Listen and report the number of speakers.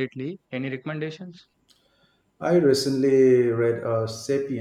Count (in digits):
2